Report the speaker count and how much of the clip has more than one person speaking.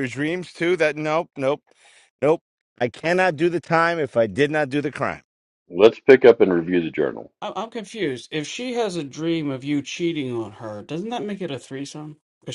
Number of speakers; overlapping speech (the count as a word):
three, no overlap